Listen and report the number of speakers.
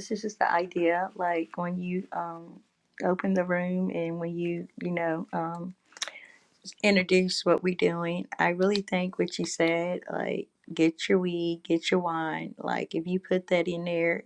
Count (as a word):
one